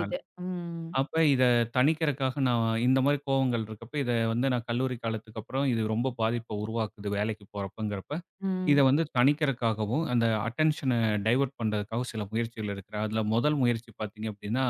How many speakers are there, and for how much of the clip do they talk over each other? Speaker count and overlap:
2, about 2%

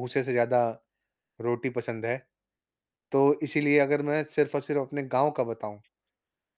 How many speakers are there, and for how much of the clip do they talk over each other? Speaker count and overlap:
1, no overlap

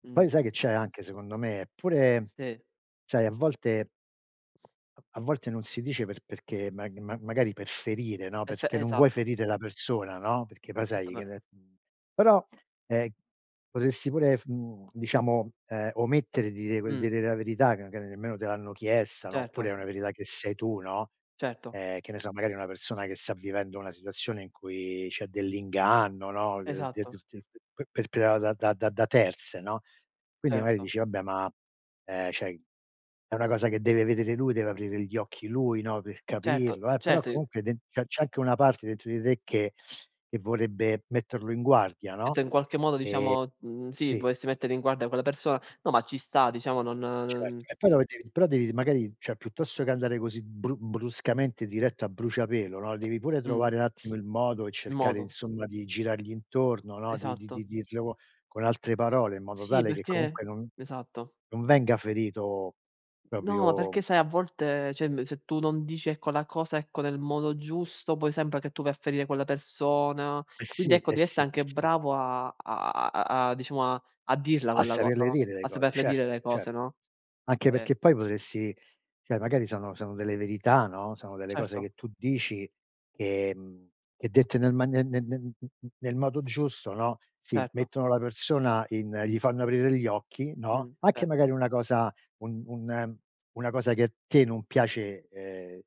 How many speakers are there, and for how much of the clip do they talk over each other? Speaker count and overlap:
2, about 11%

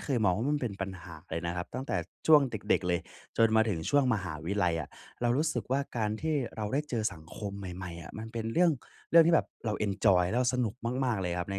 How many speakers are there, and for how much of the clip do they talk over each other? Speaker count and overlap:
1, no overlap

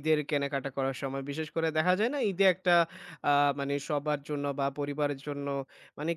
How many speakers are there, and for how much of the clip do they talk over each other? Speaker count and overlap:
1, no overlap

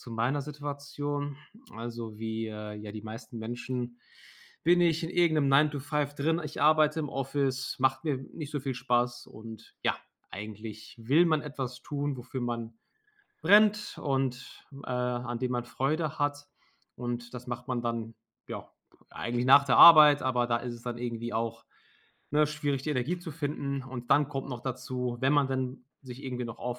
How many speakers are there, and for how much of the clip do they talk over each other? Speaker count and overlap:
1, no overlap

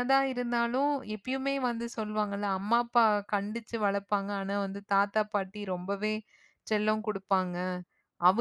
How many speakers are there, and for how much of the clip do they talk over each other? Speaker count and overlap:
1, no overlap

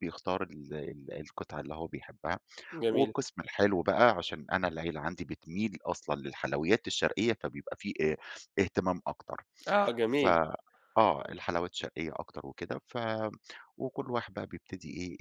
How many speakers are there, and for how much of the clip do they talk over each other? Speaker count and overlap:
2, about 2%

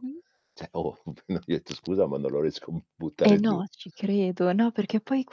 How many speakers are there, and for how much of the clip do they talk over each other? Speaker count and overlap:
2, about 7%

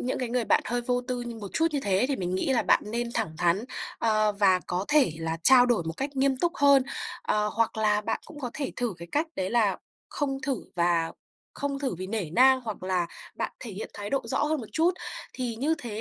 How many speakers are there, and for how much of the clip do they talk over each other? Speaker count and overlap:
1, no overlap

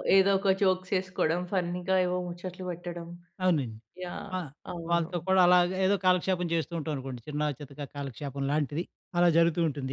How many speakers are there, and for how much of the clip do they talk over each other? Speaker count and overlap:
2, about 3%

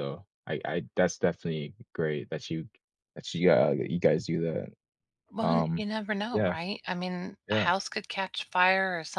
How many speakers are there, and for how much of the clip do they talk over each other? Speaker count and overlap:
2, about 9%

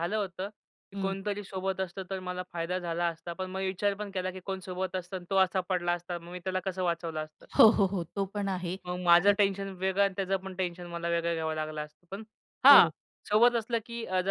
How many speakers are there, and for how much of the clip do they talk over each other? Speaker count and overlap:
2, about 4%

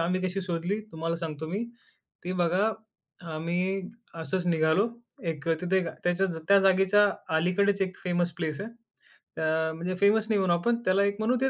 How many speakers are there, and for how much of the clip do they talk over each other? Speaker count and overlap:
1, no overlap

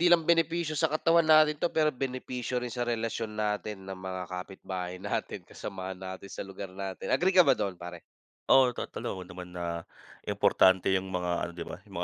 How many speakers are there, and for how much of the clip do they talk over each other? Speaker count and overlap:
2, no overlap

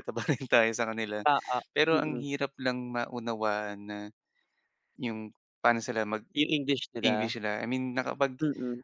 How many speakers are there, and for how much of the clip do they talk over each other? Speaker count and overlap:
2, about 9%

